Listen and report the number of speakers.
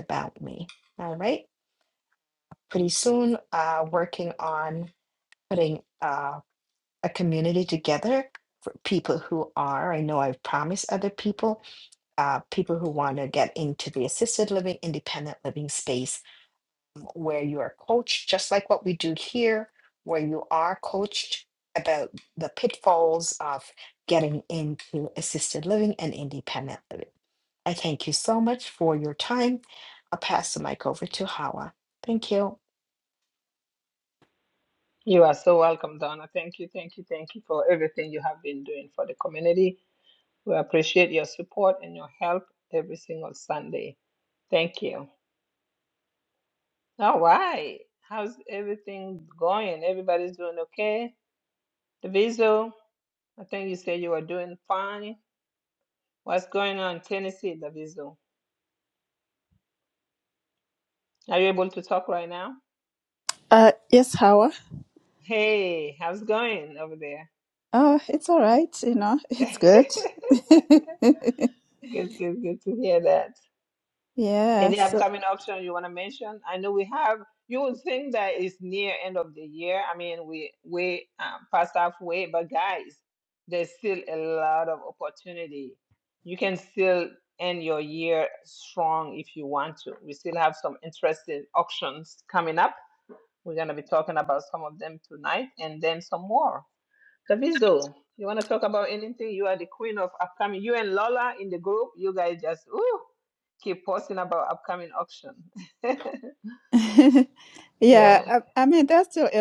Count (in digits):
3